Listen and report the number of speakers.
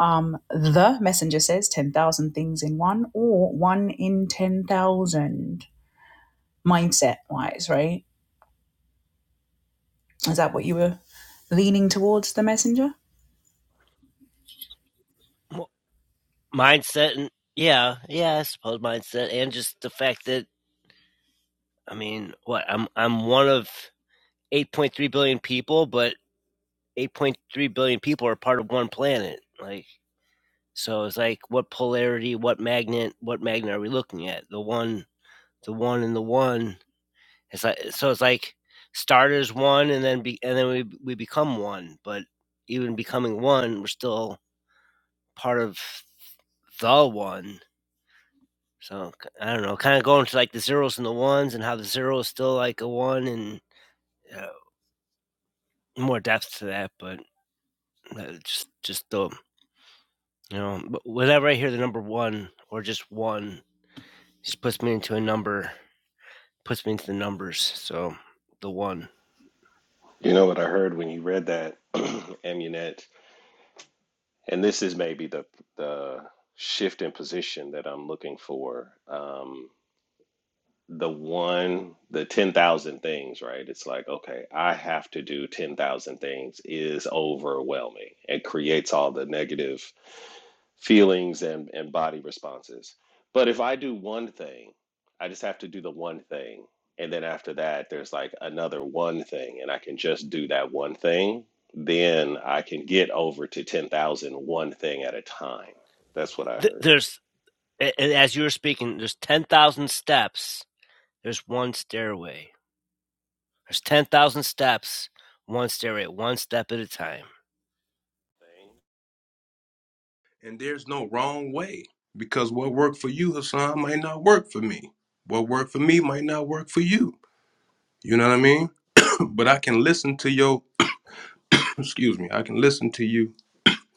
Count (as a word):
four